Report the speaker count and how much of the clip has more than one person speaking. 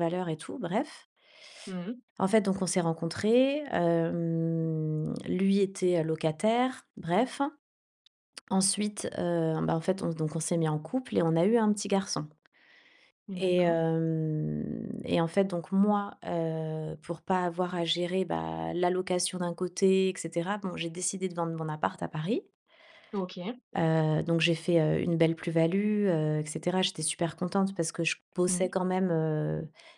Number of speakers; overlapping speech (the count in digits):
2, about 2%